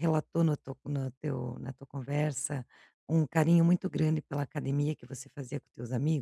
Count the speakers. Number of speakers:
1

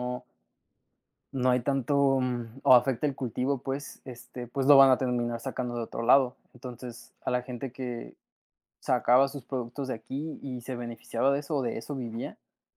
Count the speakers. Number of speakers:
1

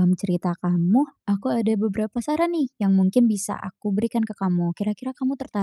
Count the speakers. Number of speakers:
1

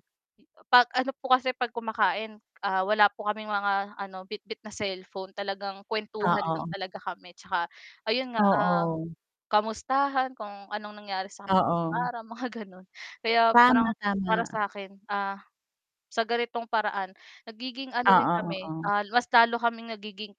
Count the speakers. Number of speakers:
2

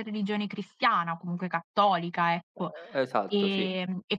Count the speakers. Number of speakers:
2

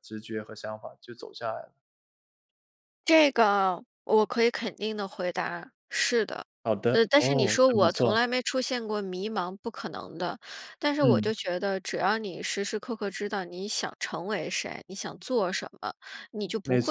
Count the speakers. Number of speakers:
2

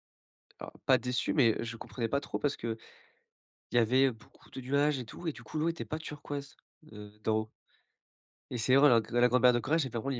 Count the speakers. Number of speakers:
1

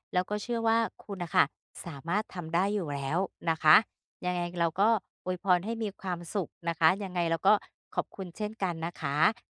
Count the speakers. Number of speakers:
1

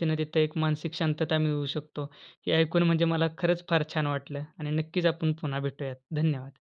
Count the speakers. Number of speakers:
1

